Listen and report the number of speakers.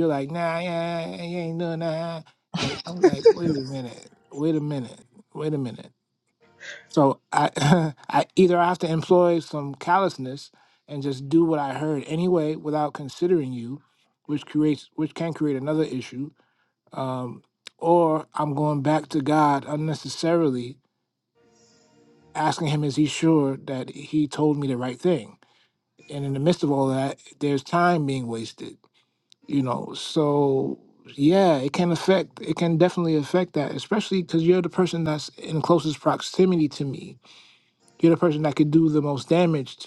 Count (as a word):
one